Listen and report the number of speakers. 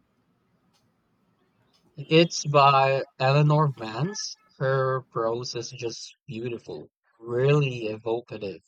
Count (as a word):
one